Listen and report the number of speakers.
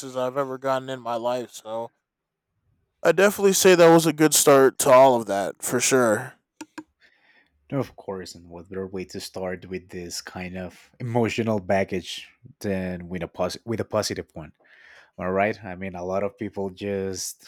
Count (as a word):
two